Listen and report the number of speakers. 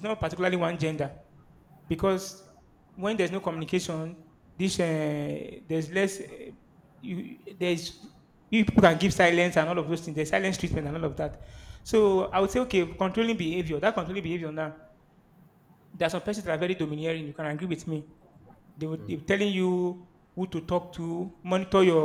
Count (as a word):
one